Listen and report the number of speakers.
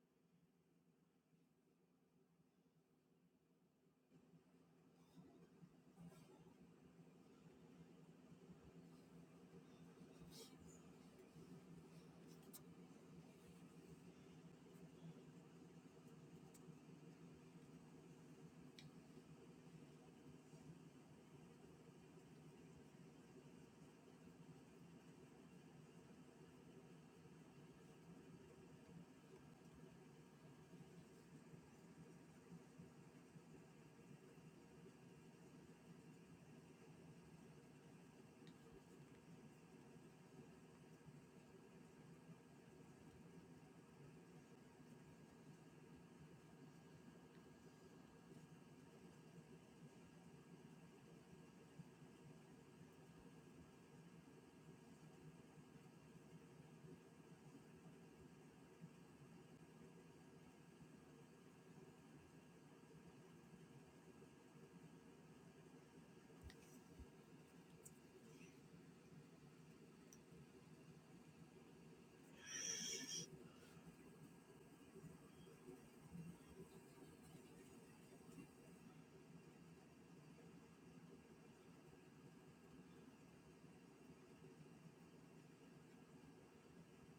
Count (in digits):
0